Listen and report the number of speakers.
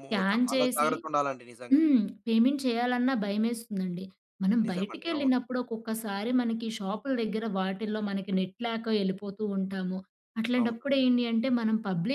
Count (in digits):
2